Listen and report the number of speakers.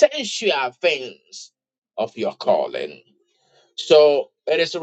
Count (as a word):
one